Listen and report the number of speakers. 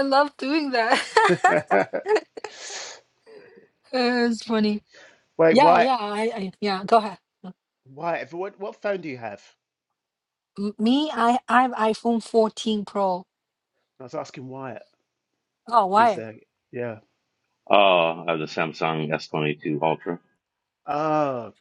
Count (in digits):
3